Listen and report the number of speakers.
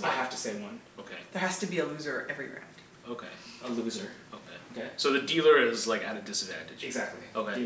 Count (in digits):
3